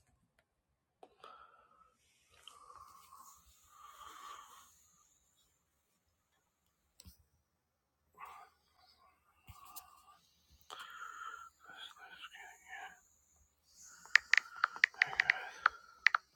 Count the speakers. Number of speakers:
0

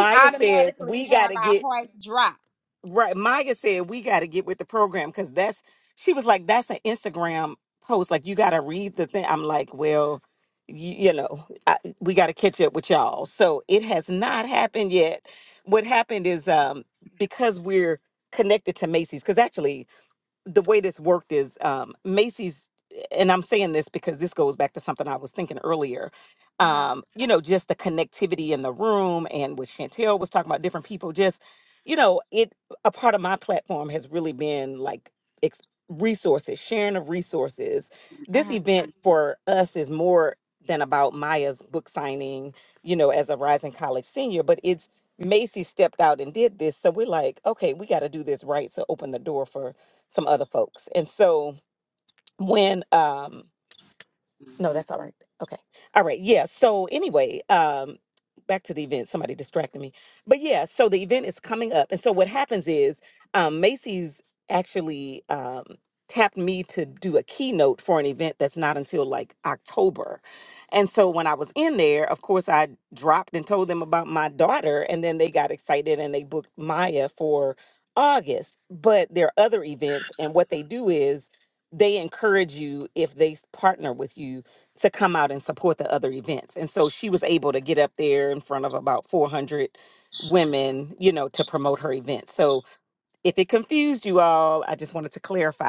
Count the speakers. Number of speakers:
2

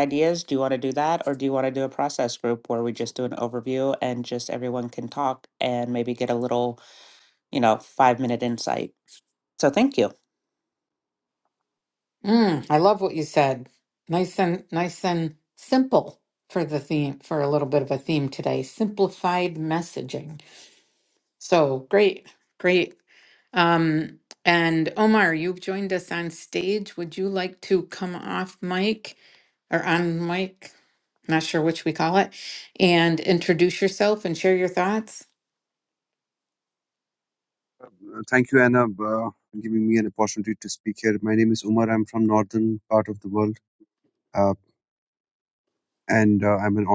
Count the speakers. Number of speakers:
3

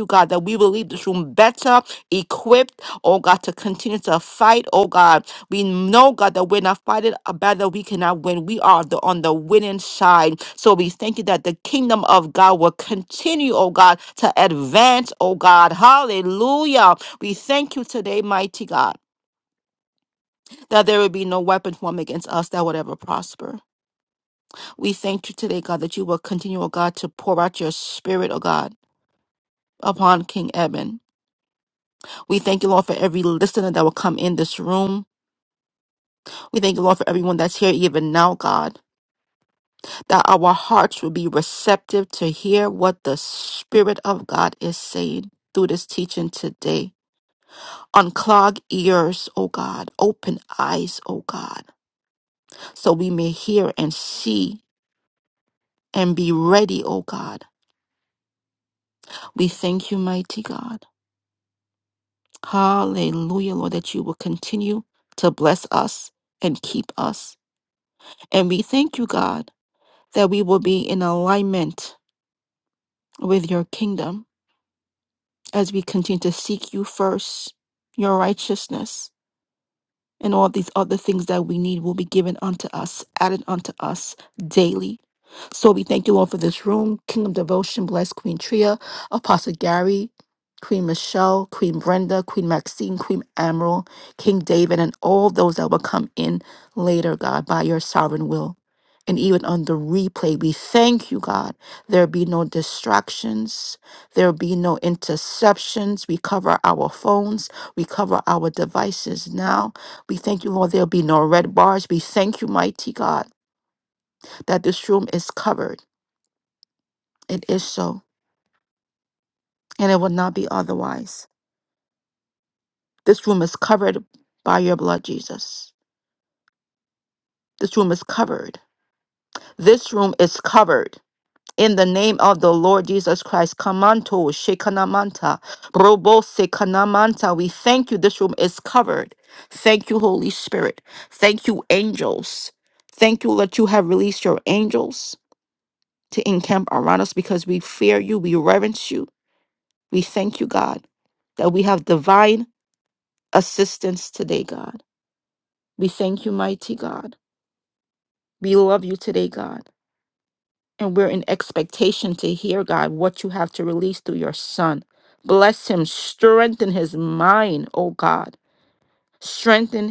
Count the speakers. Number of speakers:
1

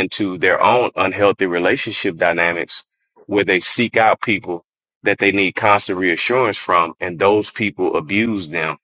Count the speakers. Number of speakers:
1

